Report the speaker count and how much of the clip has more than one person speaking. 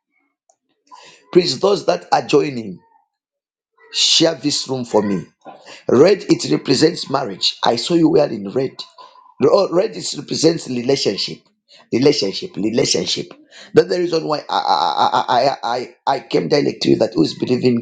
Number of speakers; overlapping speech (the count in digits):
1, no overlap